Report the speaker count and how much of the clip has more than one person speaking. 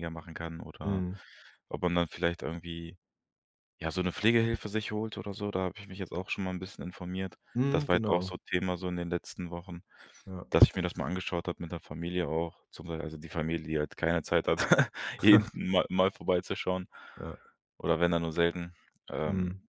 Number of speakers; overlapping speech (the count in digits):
2, about 5%